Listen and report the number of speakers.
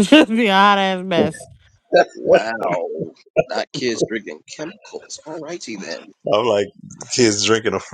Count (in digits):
3